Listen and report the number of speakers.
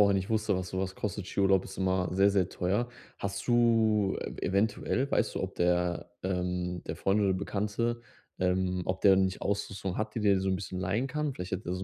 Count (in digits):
1